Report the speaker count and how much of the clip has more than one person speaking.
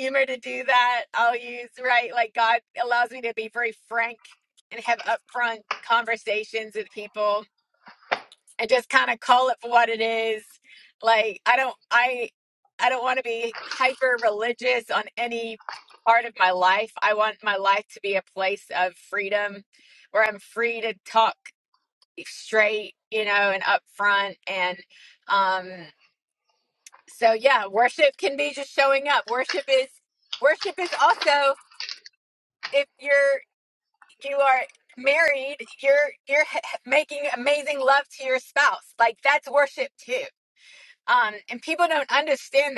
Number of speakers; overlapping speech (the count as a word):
one, no overlap